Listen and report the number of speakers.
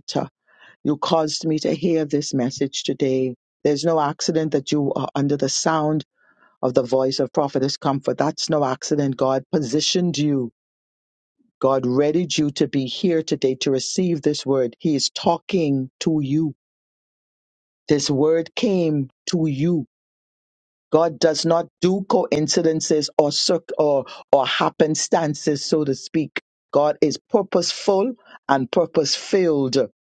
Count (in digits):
1